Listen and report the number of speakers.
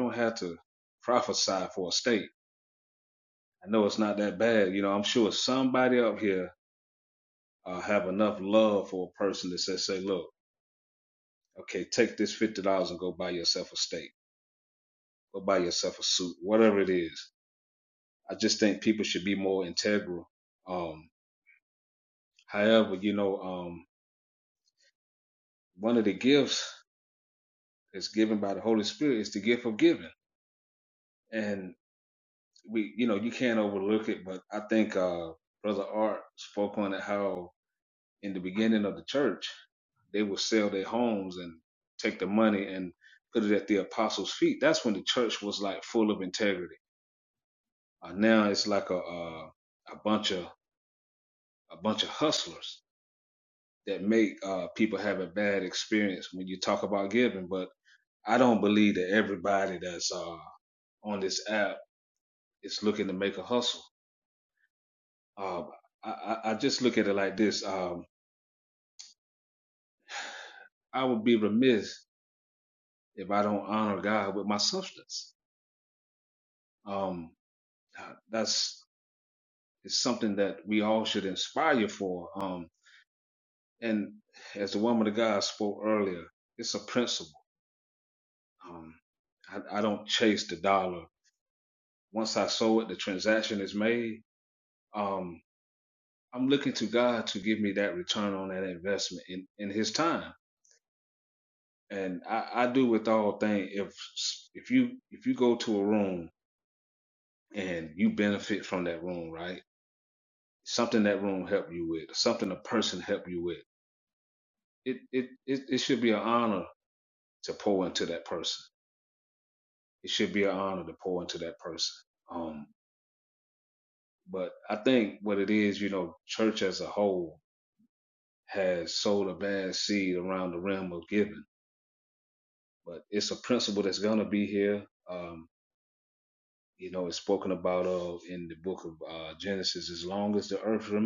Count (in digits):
1